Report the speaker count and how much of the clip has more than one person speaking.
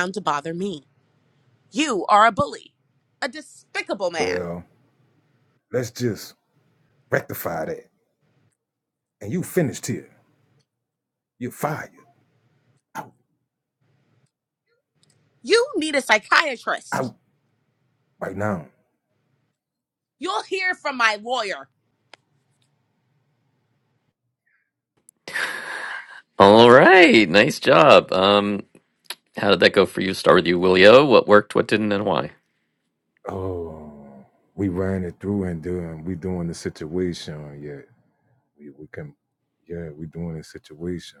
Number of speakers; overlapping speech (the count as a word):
three, about 1%